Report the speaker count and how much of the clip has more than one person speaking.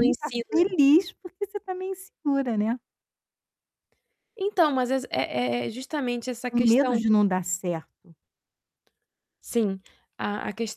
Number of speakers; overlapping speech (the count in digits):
2, about 11%